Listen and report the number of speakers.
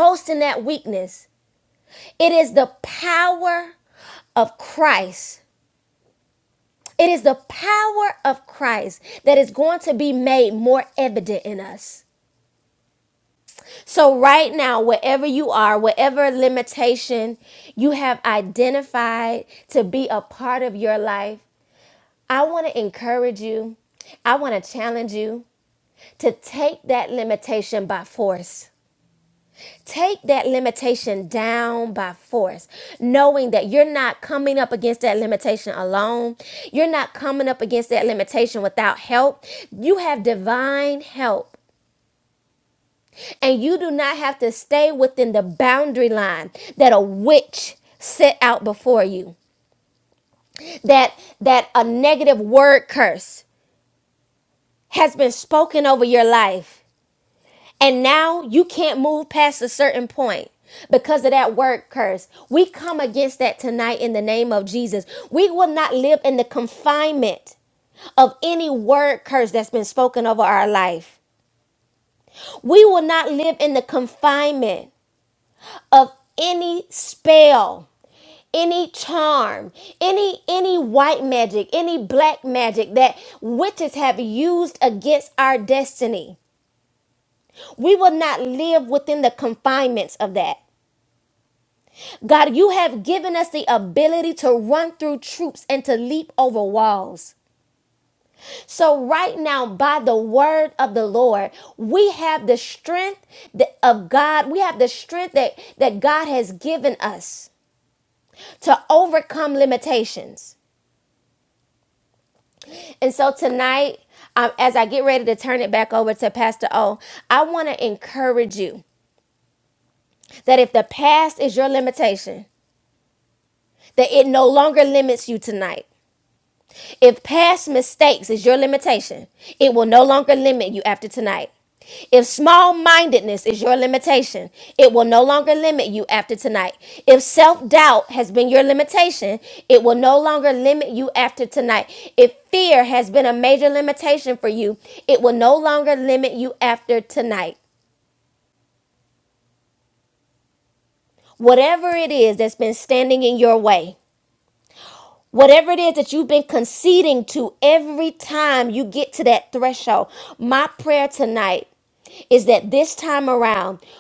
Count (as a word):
one